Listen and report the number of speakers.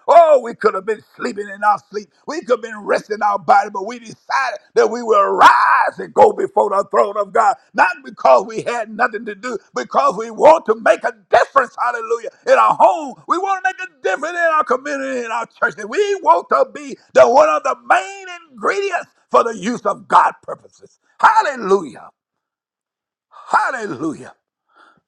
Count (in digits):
1